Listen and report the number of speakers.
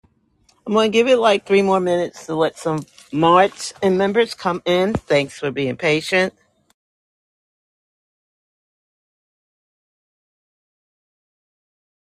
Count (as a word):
one